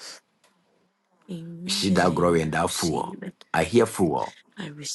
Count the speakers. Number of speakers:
2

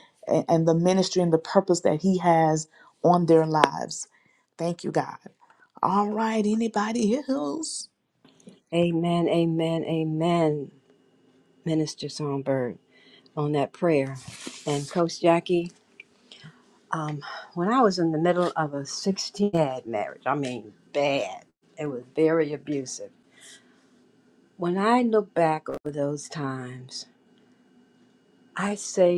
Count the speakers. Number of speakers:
2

